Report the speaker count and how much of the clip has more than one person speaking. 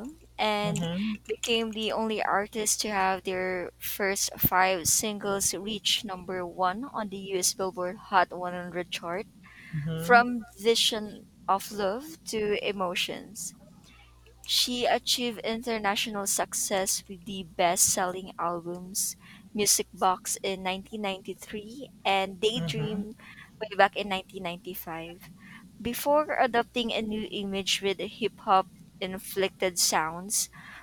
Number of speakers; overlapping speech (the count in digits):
2, about 3%